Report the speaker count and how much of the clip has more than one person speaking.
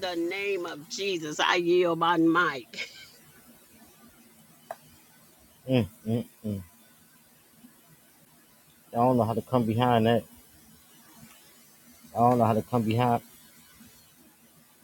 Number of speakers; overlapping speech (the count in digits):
2, no overlap